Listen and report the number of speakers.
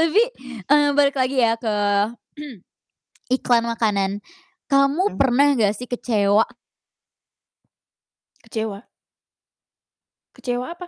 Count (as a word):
two